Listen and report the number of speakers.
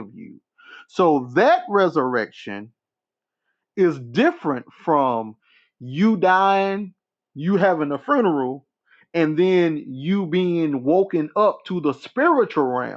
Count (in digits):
1